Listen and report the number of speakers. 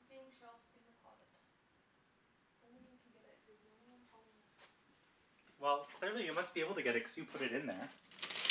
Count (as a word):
two